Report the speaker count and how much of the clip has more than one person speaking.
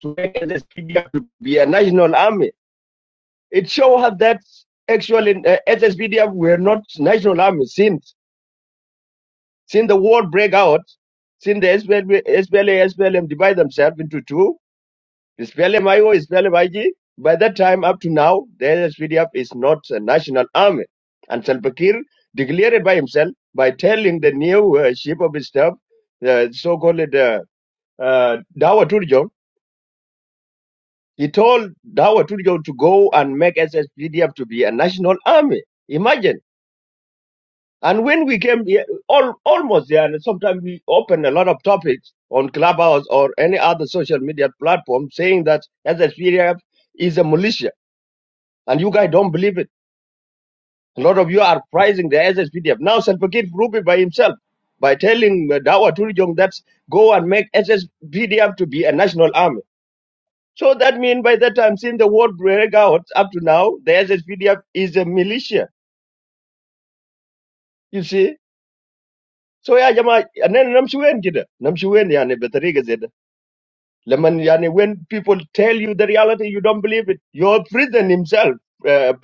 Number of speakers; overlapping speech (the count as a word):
one, no overlap